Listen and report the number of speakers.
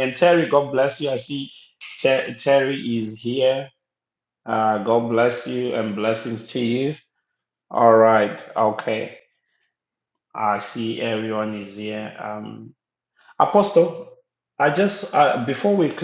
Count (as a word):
one